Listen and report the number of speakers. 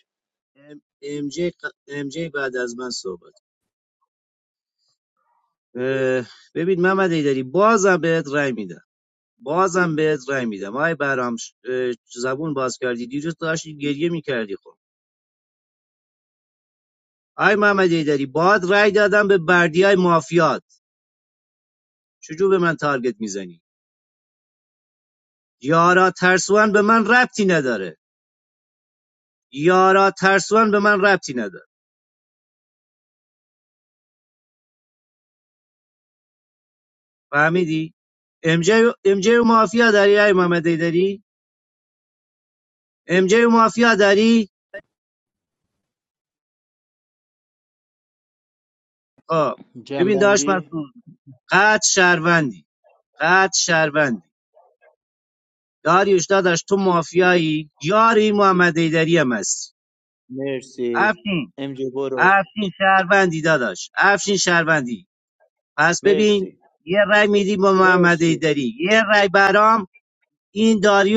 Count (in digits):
2